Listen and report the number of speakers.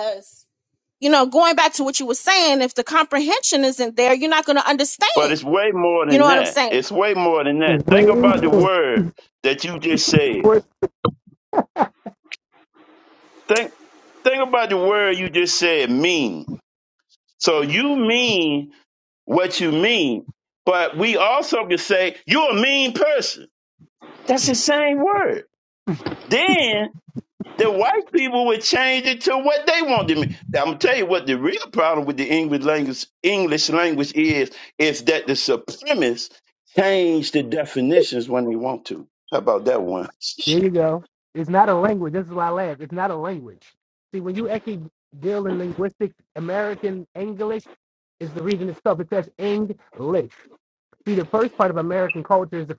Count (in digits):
3